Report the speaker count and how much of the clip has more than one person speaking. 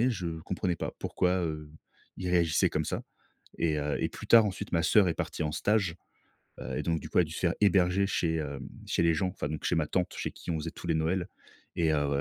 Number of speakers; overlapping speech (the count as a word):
one, no overlap